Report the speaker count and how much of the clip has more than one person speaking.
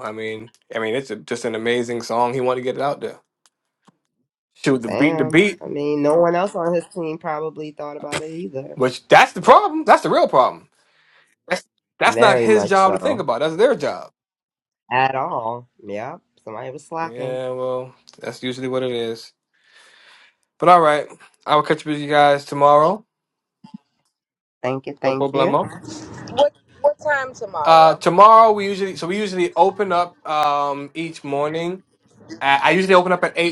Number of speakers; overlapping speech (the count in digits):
3, about 9%